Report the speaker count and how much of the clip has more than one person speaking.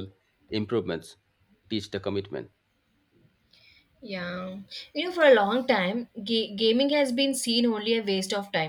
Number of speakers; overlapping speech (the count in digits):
2, no overlap